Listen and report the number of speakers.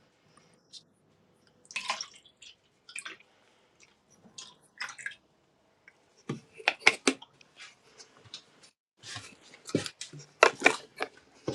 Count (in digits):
0